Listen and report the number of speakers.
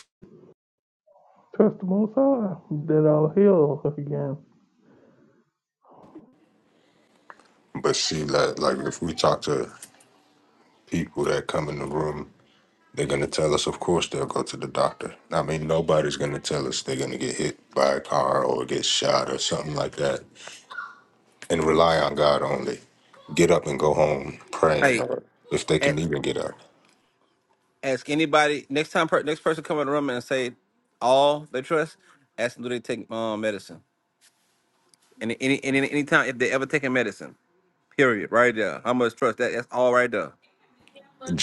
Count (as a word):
three